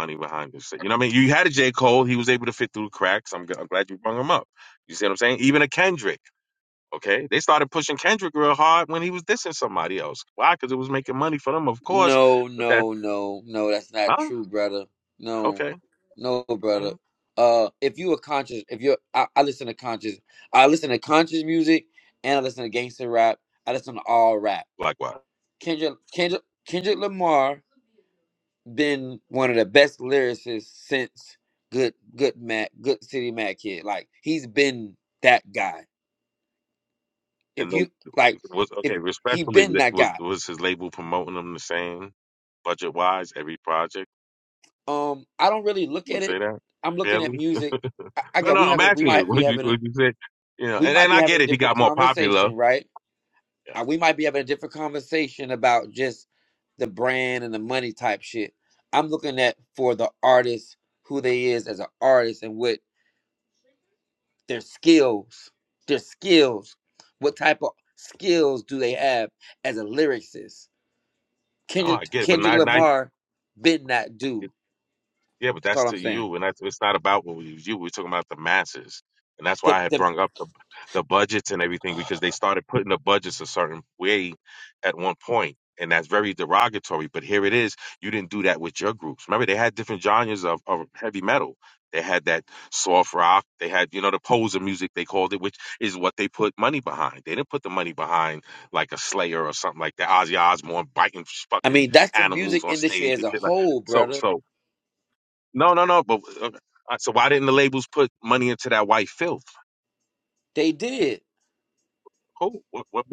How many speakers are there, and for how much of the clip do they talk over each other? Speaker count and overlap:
two, about 9%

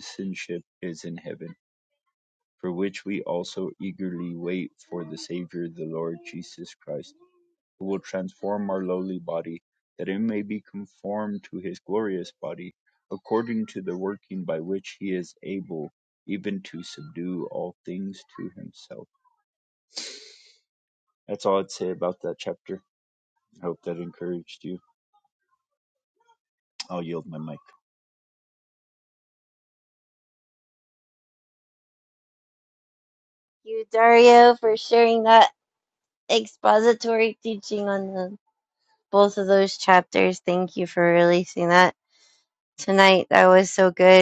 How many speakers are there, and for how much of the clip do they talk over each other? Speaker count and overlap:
two, no overlap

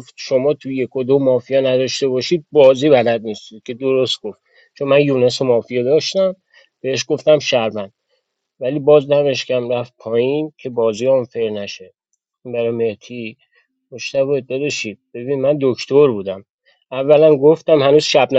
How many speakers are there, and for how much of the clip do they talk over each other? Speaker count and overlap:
one, no overlap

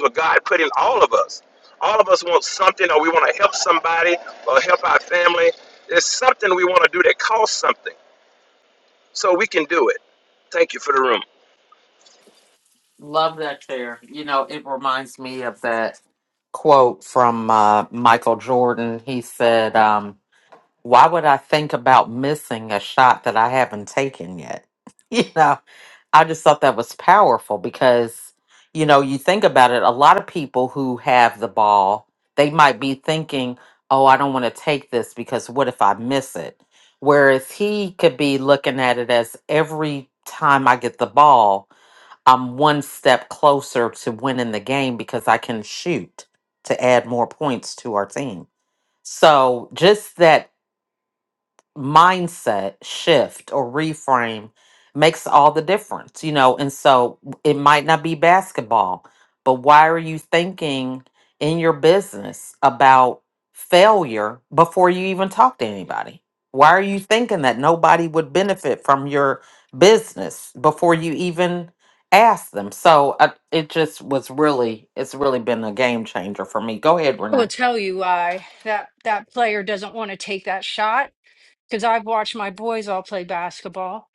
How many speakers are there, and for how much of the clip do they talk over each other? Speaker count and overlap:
three, under 1%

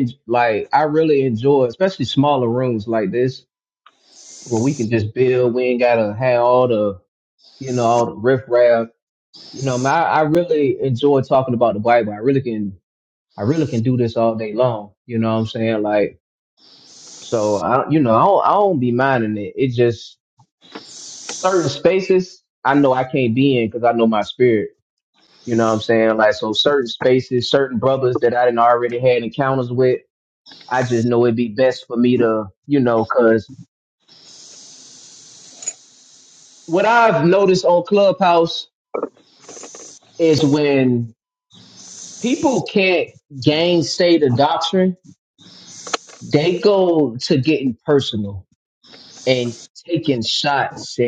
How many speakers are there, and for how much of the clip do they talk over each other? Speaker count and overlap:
one, no overlap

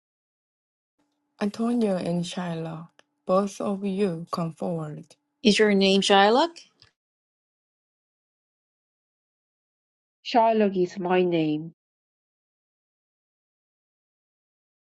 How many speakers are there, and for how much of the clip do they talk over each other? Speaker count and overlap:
three, no overlap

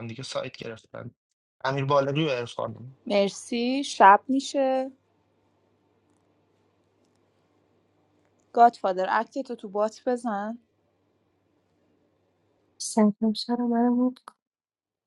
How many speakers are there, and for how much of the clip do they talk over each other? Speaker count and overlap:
three, no overlap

